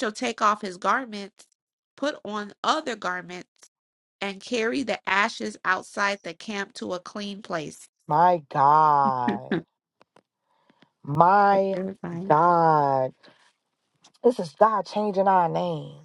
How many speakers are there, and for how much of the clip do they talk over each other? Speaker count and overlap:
2, about 2%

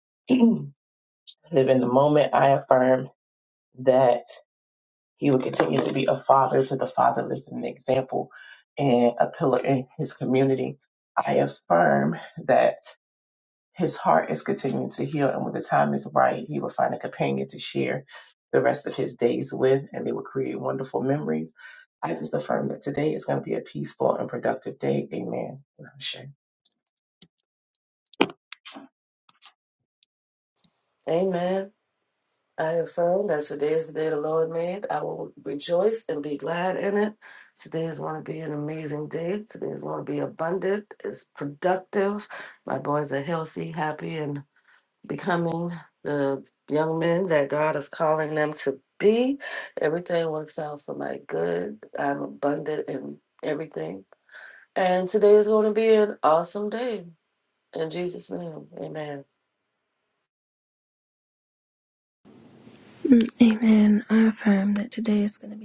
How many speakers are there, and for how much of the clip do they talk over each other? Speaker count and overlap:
3, no overlap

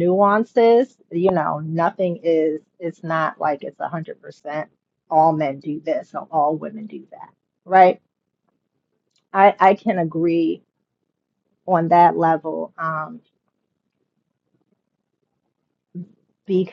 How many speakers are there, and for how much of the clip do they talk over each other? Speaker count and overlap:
1, no overlap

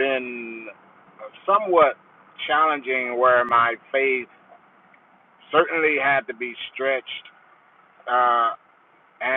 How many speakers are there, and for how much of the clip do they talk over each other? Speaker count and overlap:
1, no overlap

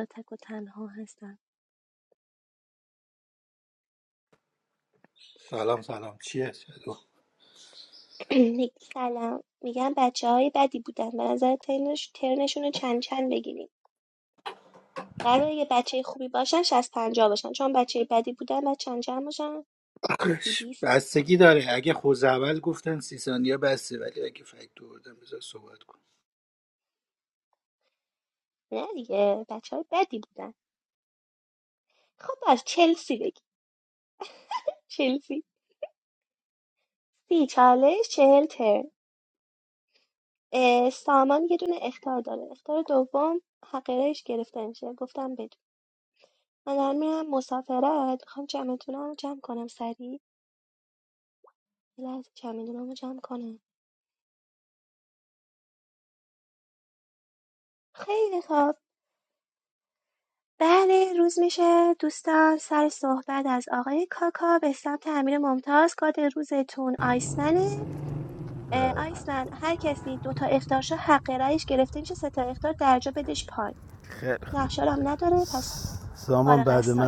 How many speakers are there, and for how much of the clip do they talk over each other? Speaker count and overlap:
3, about 2%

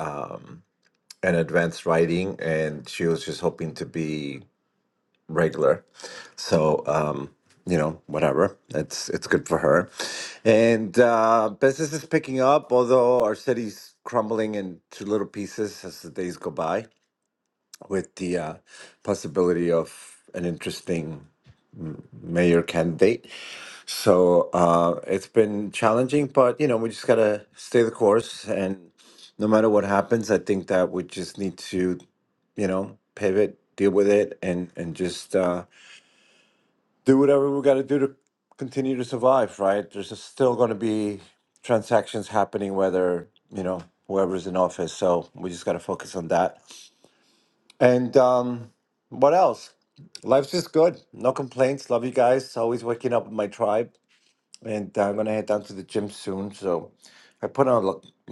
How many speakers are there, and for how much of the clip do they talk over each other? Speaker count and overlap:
1, no overlap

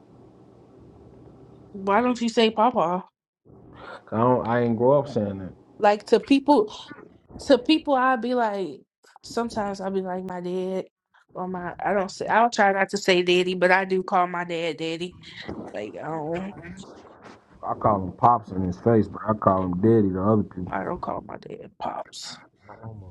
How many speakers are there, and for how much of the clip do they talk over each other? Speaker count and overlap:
2, under 1%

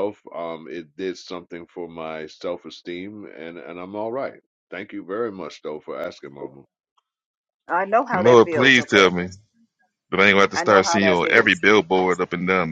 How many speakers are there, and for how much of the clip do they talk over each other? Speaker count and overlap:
3, about 15%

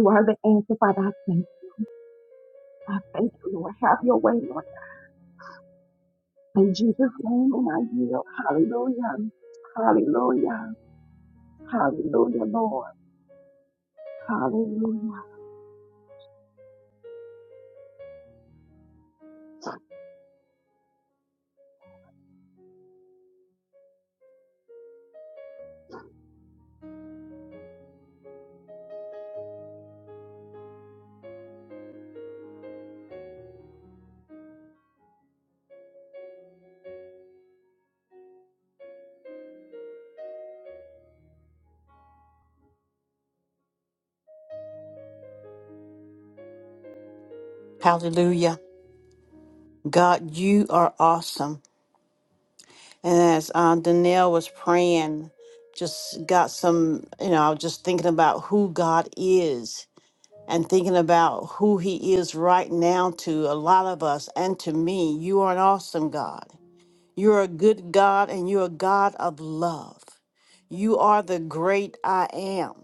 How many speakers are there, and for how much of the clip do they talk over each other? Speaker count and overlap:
2, no overlap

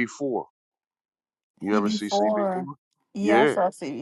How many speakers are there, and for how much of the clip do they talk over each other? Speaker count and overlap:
2, about 32%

